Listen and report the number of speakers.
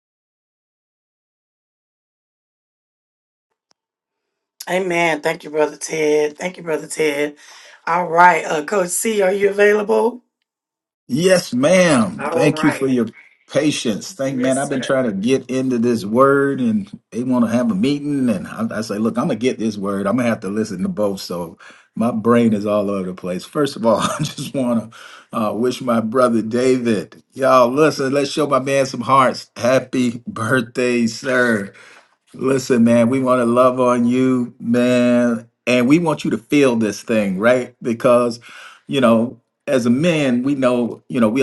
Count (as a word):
two